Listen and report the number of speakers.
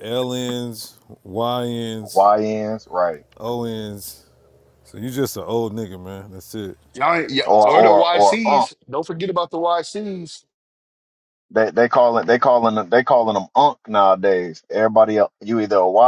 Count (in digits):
3